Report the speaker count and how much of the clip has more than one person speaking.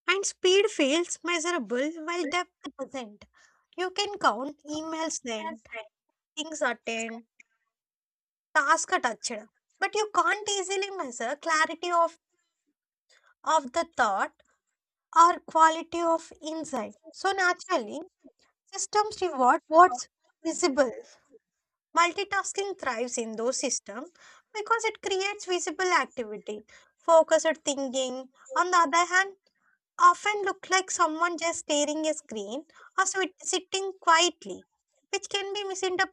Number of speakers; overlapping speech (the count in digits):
1, no overlap